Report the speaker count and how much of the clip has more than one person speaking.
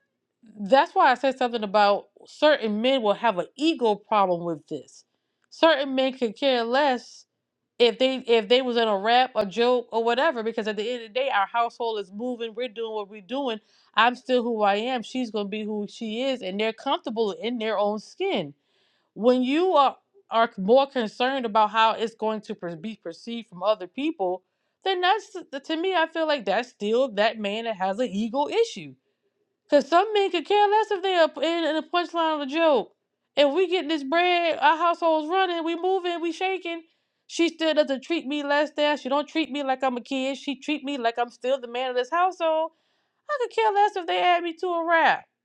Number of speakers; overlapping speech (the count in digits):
1, no overlap